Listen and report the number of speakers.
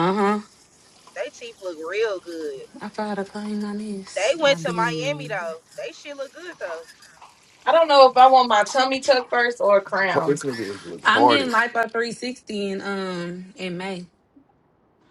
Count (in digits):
4